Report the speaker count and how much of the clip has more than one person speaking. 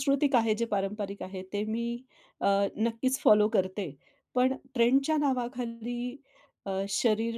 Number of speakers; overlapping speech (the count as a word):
one, no overlap